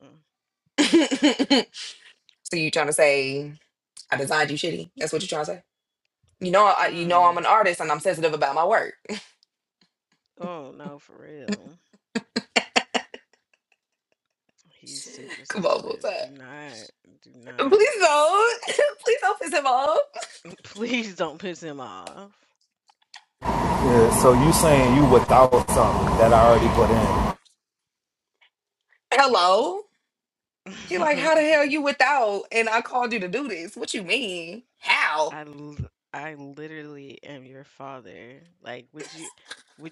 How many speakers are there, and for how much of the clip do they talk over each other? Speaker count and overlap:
three, about 5%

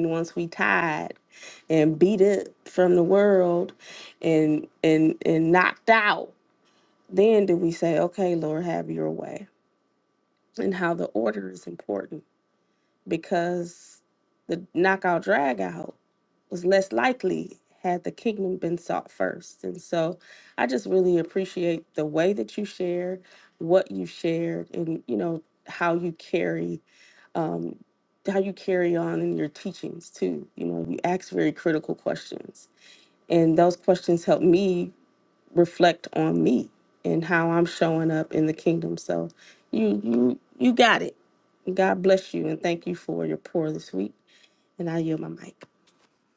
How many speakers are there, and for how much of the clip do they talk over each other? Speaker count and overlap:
one, no overlap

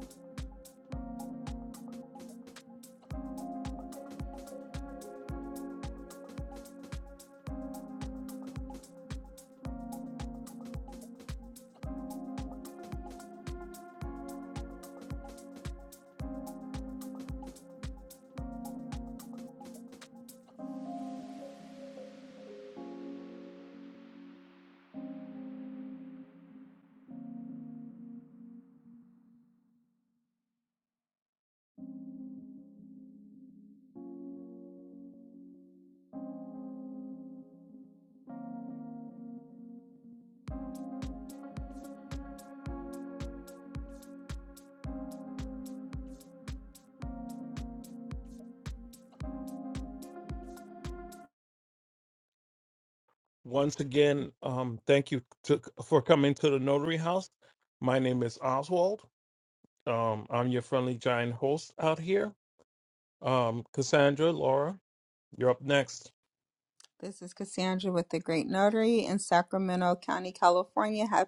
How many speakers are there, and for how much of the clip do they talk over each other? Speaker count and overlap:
two, no overlap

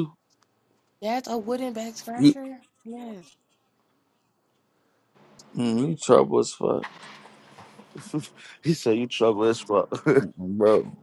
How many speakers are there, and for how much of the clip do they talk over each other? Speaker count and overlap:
three, about 2%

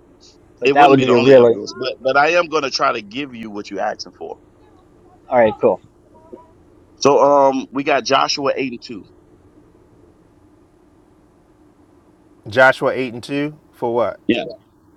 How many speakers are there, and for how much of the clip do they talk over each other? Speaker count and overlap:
three, about 6%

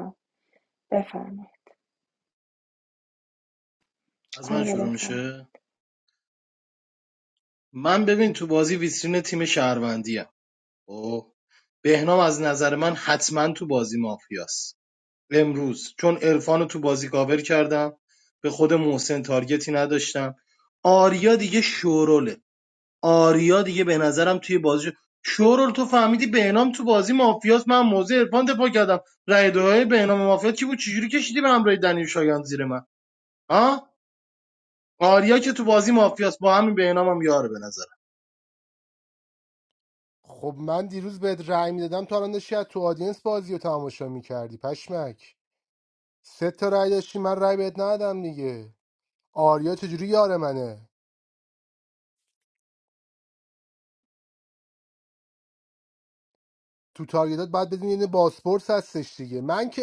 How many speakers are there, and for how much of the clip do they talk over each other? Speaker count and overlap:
three, about 1%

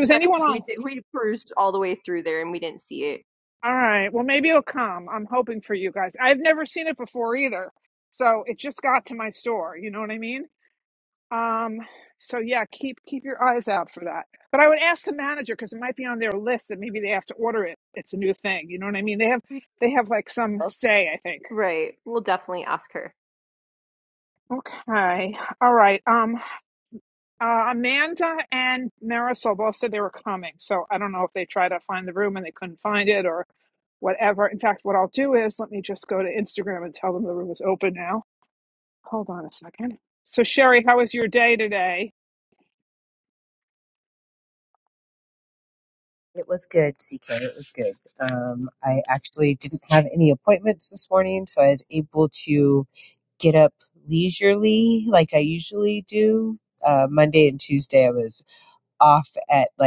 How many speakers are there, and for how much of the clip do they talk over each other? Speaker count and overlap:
three, about 1%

